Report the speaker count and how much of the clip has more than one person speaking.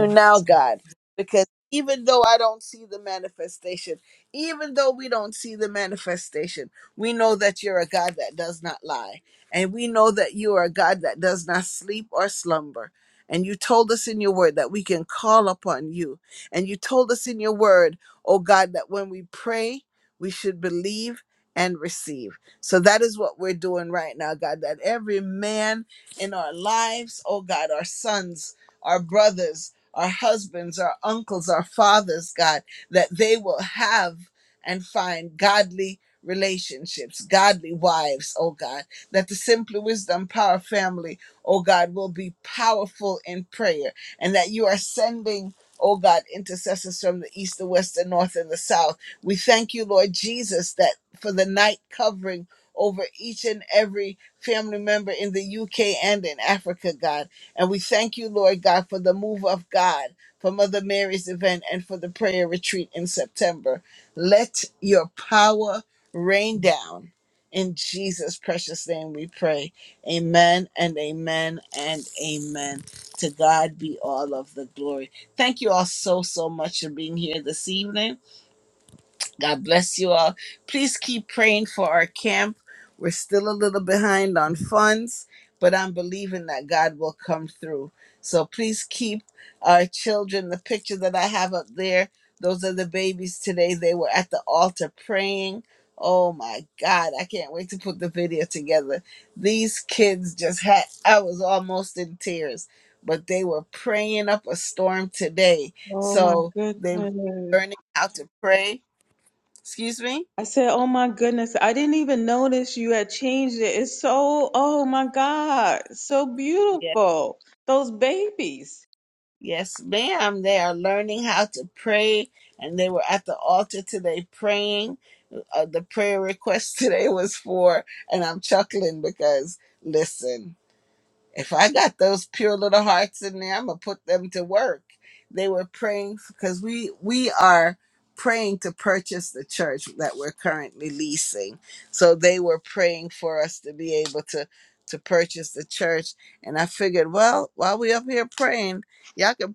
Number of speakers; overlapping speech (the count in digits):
2, about 1%